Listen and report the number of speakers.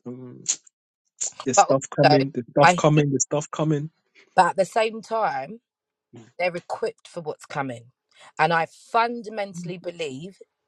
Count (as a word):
two